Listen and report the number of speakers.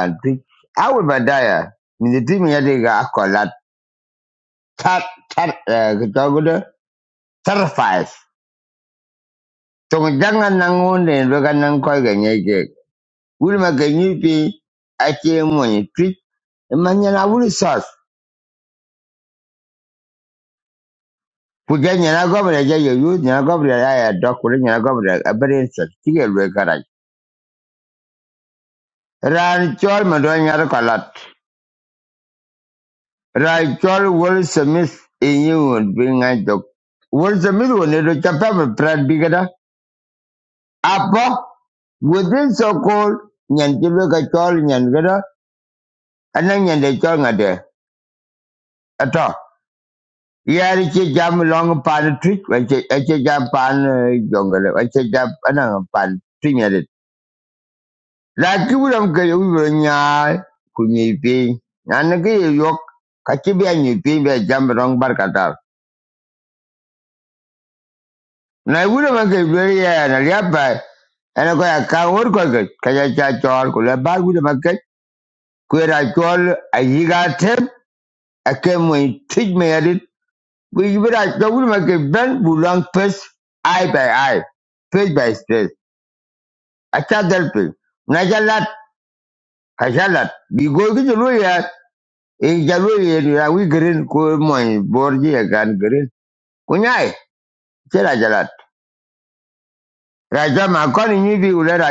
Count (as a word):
one